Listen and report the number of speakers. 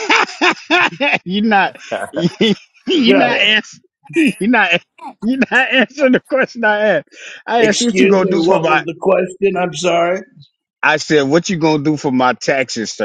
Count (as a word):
two